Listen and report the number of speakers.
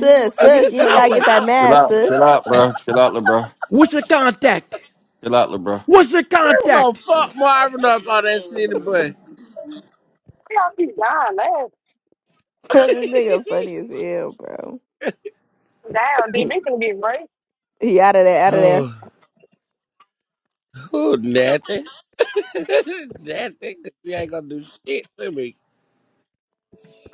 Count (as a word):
five